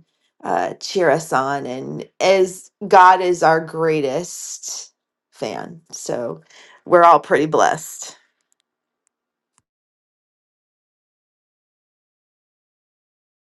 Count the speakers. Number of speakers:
one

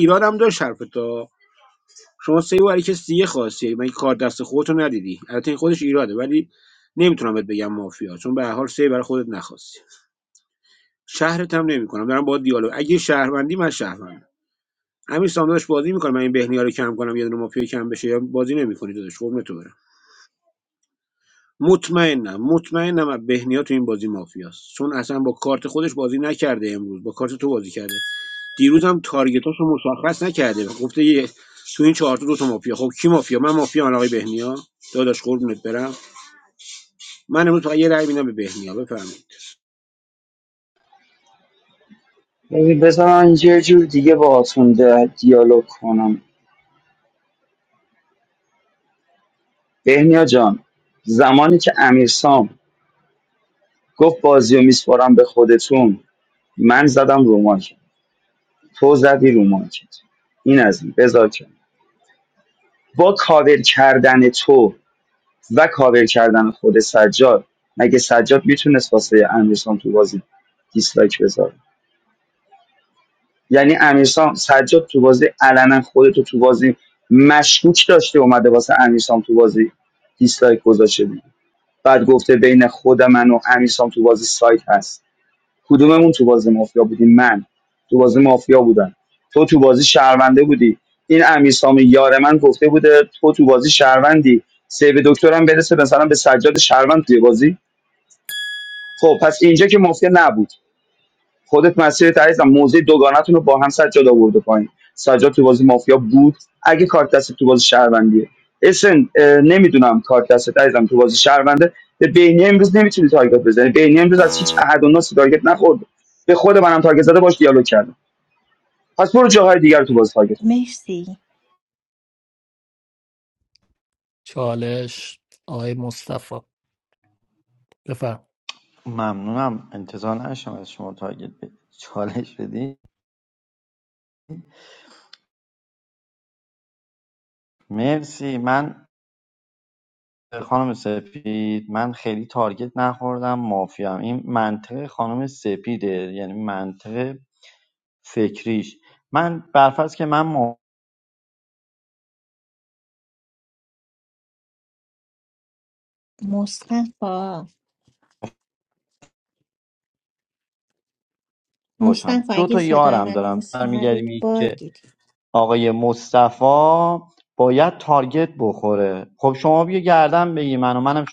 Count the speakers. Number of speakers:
five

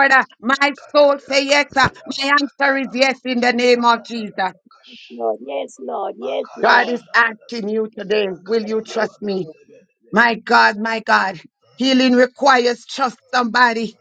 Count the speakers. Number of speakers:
three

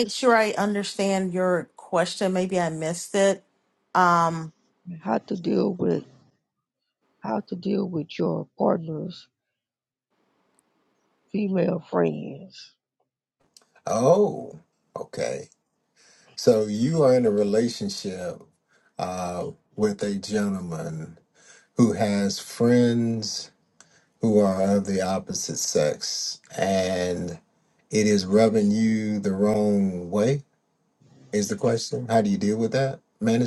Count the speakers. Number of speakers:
three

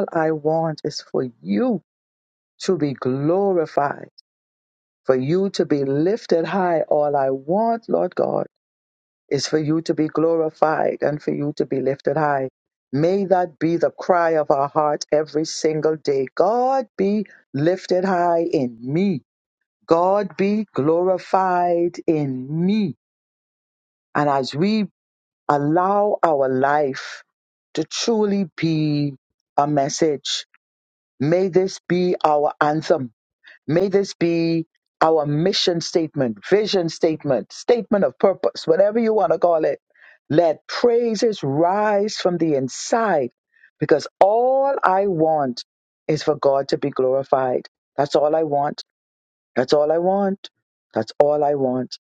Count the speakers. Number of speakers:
one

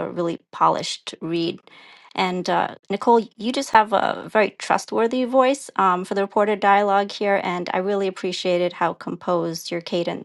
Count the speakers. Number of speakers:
one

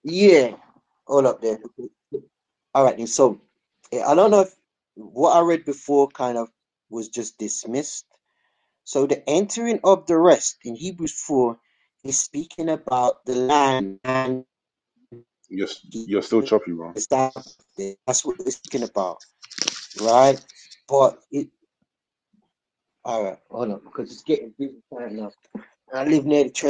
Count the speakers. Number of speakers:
two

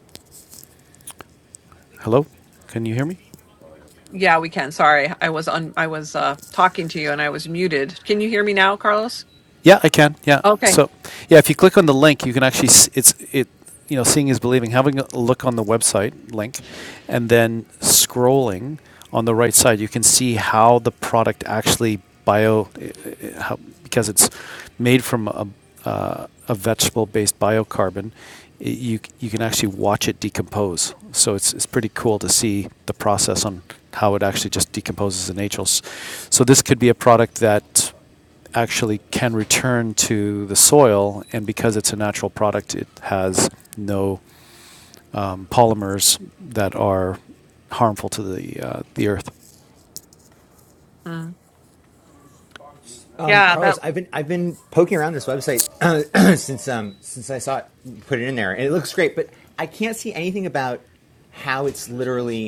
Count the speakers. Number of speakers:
three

